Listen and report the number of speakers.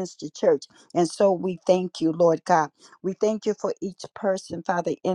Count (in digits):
1